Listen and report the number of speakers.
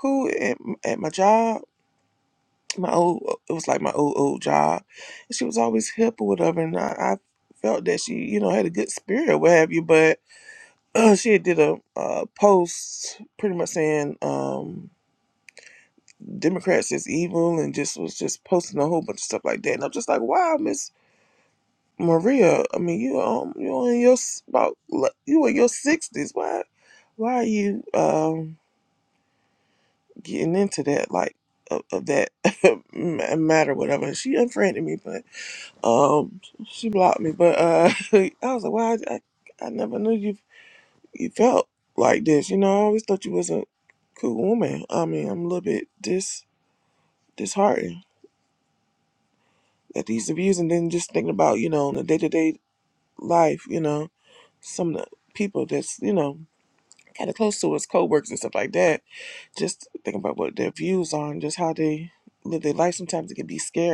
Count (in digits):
1